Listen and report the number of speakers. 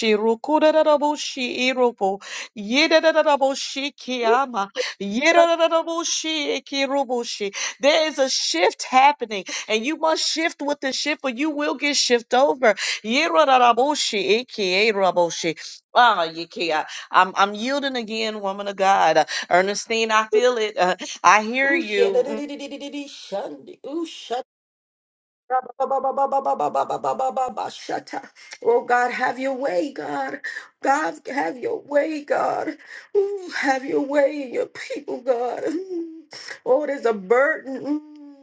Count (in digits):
2